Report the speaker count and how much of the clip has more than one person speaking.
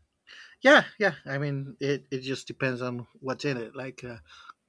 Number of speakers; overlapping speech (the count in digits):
1, no overlap